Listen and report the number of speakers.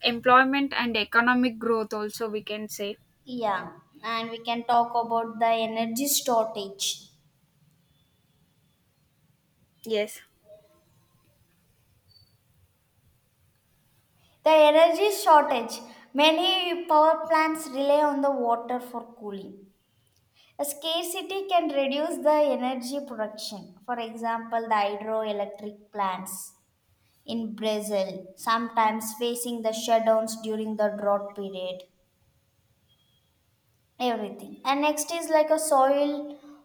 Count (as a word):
two